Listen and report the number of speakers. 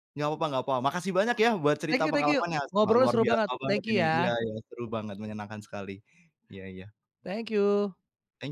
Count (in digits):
2